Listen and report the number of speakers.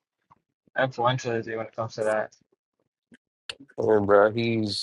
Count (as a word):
two